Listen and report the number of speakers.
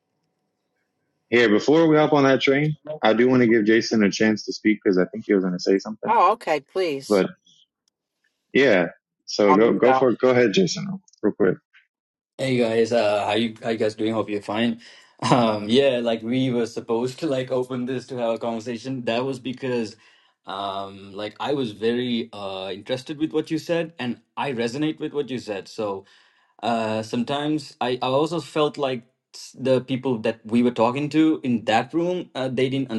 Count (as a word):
three